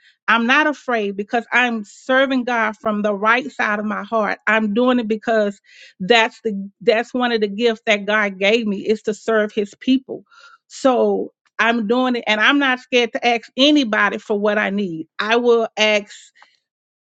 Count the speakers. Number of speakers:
one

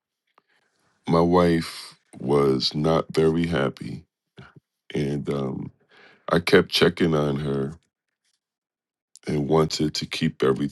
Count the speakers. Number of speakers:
one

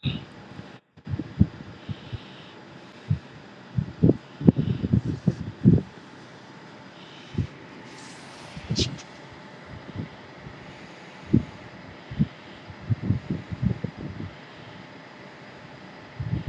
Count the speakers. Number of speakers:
zero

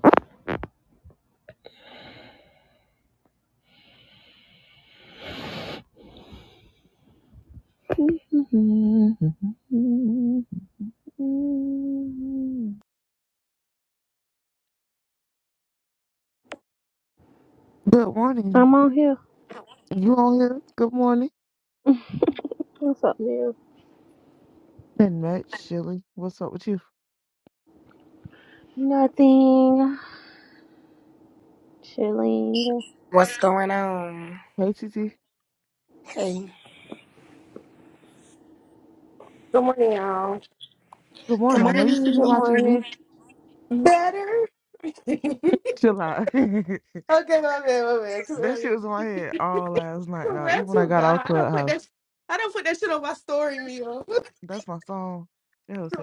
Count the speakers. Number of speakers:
four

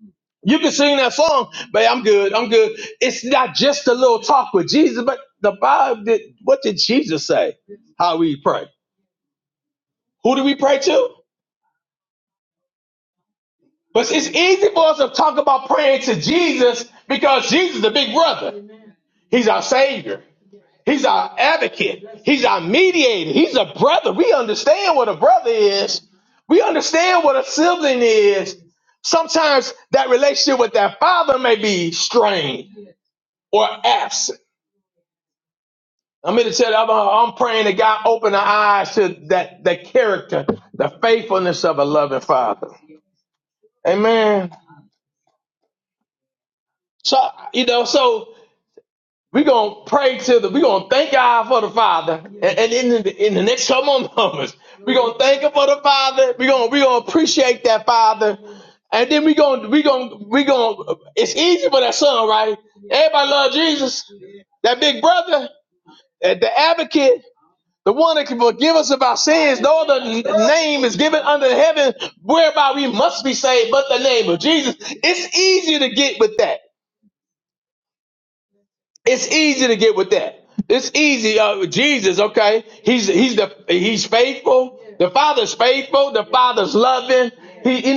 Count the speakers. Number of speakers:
one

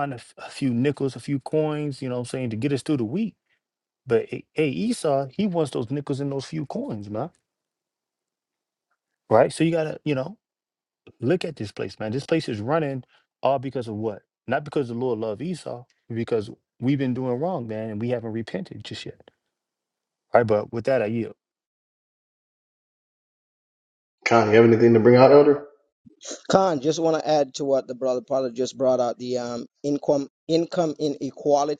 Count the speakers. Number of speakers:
three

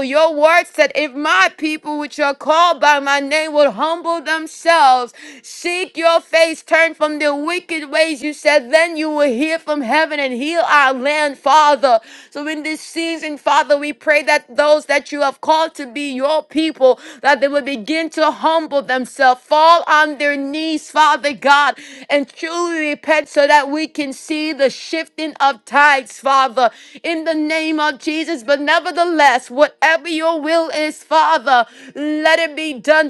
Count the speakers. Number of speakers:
one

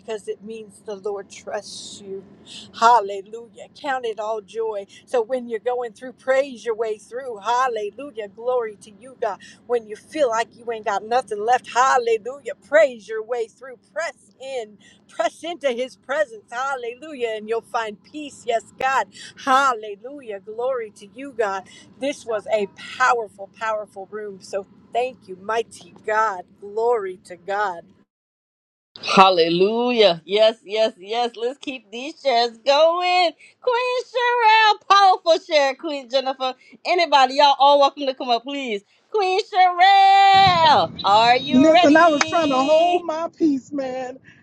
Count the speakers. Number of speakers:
three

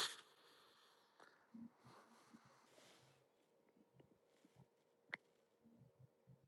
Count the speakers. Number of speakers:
zero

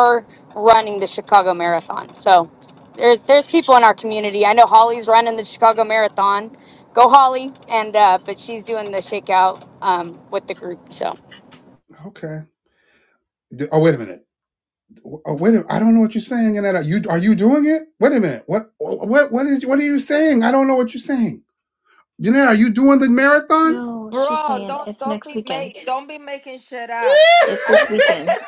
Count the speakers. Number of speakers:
four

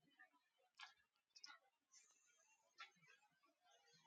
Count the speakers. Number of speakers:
zero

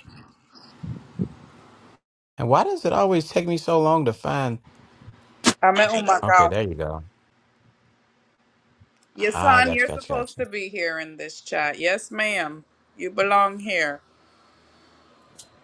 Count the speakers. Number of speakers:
two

